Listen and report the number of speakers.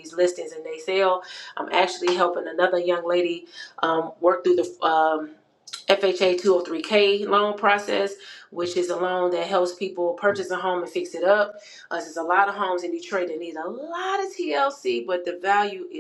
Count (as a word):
one